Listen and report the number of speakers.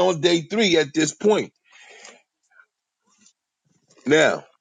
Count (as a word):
one